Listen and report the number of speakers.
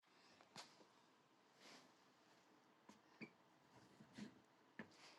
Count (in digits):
0